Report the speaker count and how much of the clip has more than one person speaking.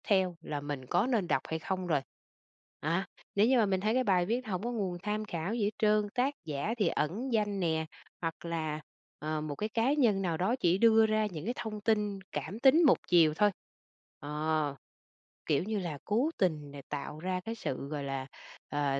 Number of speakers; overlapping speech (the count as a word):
one, no overlap